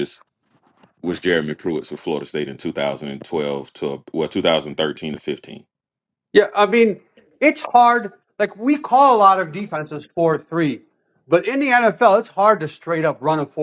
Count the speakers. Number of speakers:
2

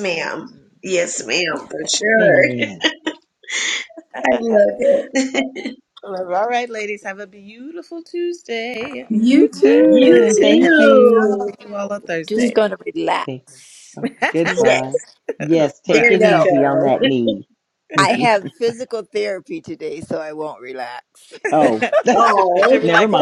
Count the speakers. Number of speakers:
4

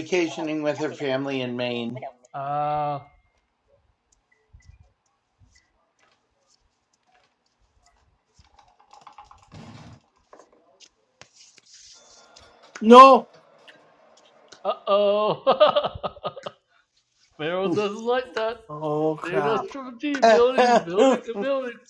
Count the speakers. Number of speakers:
3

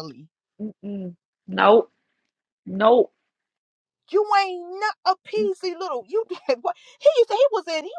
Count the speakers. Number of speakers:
2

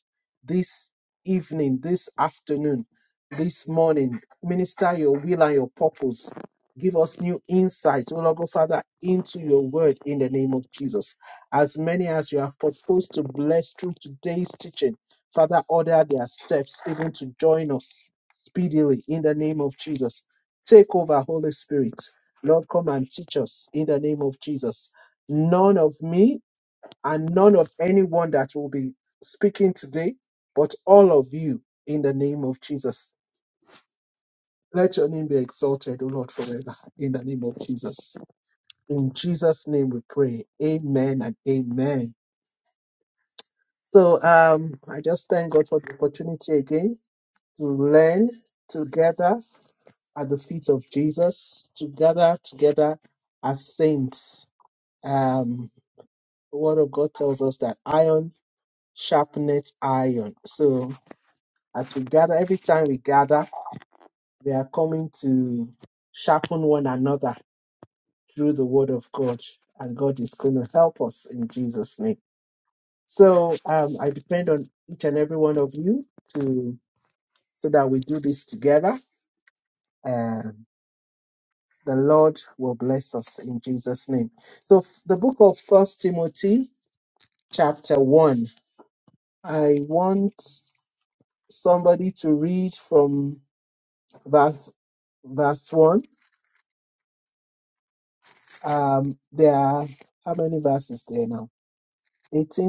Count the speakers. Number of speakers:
1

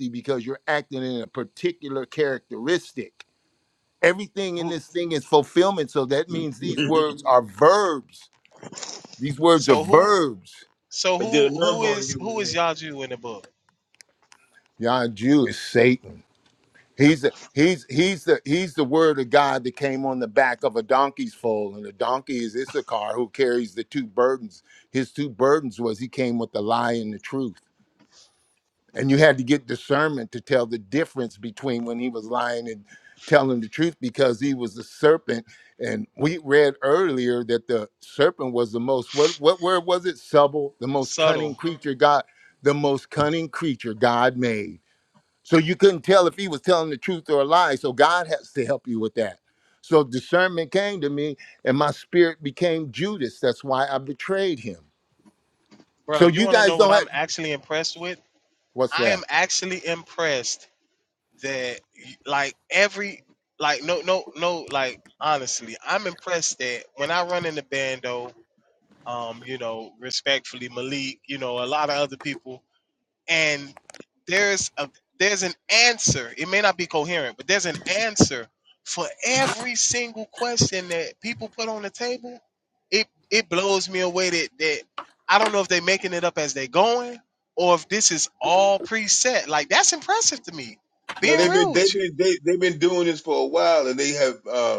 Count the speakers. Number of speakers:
3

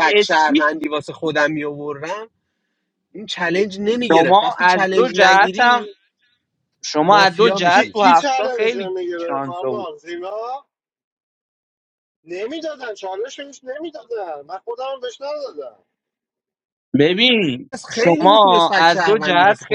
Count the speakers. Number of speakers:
3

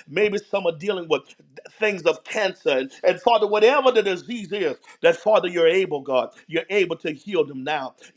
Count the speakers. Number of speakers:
1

